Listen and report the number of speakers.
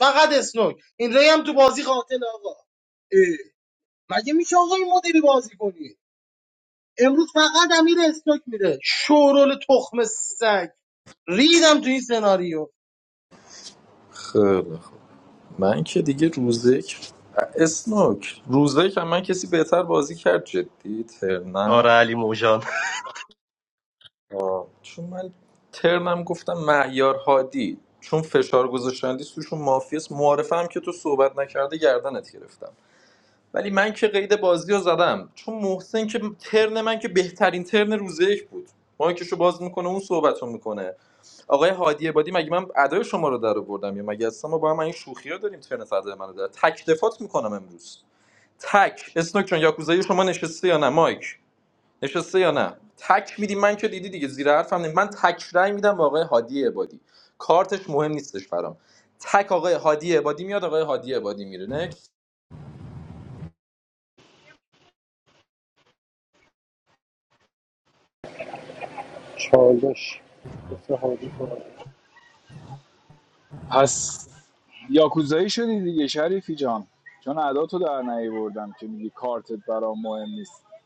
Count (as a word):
five